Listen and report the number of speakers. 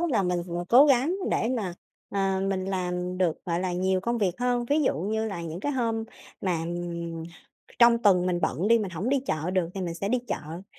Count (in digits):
1